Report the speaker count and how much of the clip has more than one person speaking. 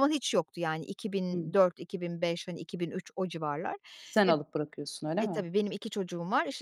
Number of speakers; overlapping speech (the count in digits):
2, about 7%